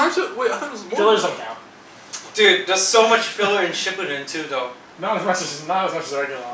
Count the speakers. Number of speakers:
3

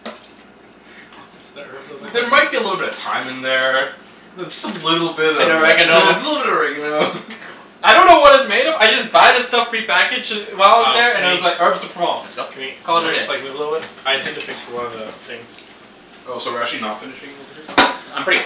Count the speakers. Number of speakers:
4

